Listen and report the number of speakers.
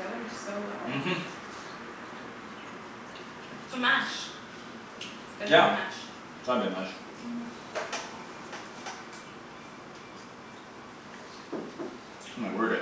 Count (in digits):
2